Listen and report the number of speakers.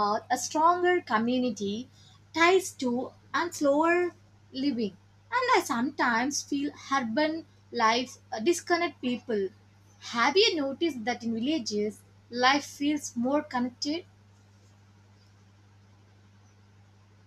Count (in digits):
1